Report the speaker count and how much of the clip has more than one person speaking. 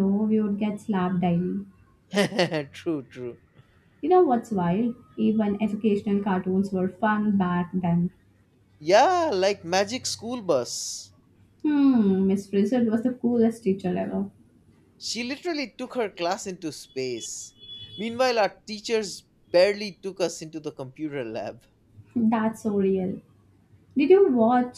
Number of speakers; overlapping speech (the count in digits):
2, no overlap